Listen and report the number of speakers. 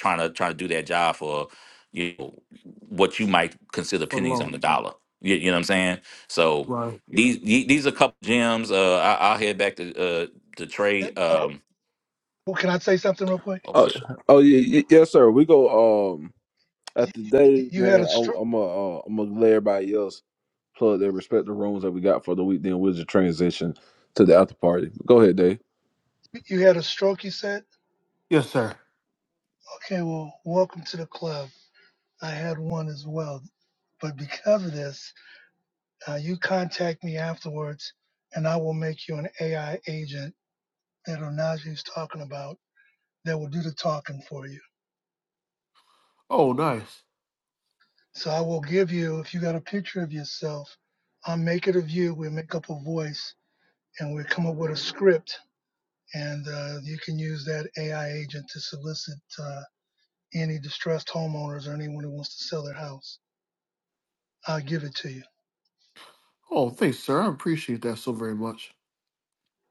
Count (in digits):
4